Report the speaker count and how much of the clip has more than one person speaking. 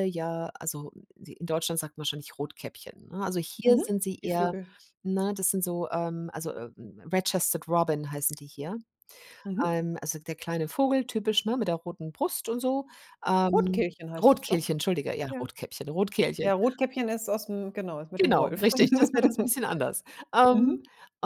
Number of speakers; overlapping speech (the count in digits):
2, about 12%